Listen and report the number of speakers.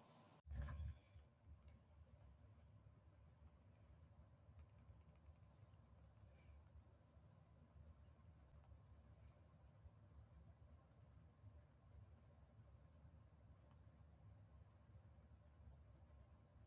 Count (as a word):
zero